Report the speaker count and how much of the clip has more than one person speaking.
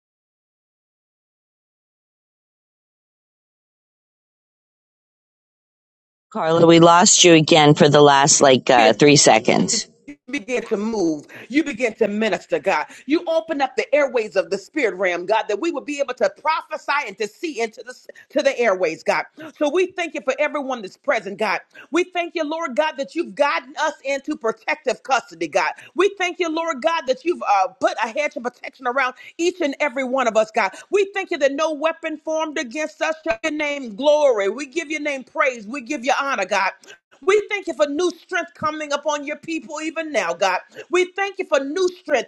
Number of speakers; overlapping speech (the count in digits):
2, no overlap